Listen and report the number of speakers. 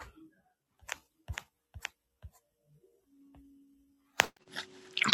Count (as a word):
zero